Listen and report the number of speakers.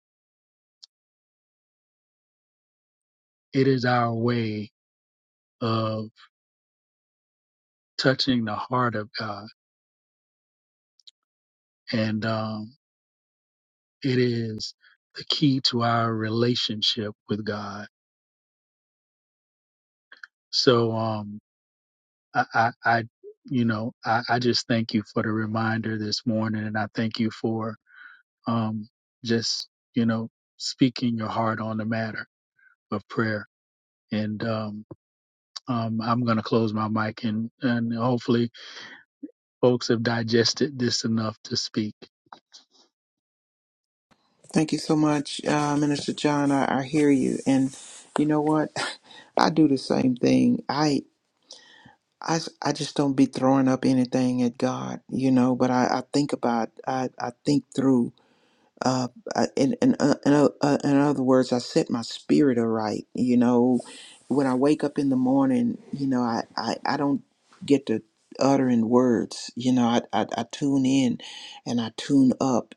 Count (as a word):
two